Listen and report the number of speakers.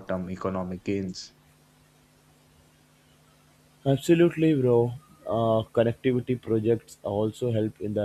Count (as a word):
two